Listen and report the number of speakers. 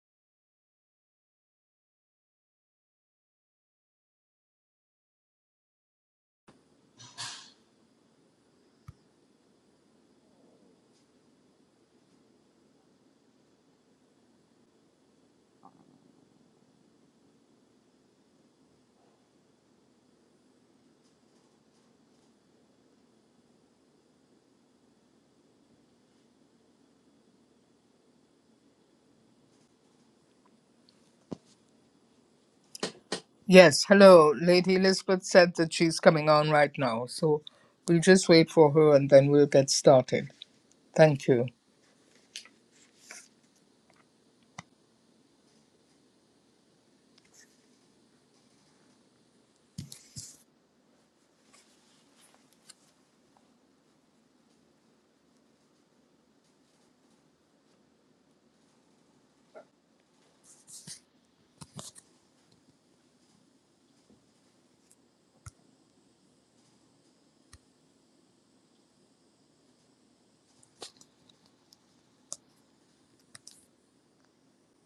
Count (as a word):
one